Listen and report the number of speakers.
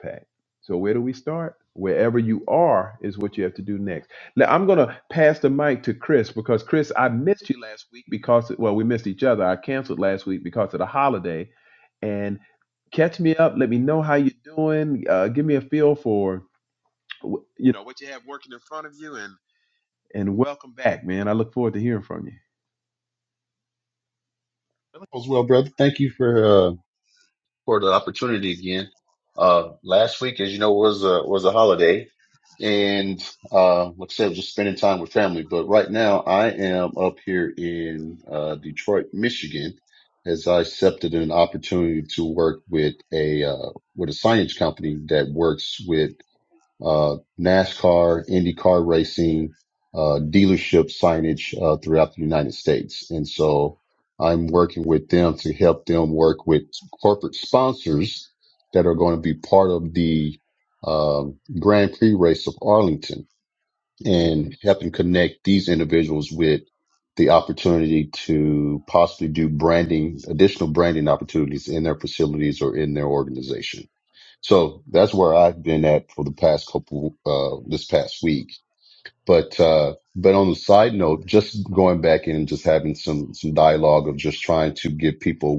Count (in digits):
2